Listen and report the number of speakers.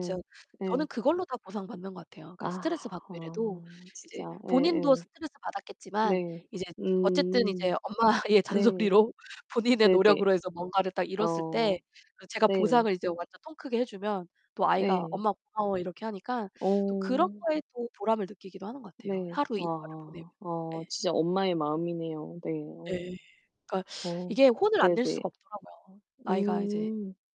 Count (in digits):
2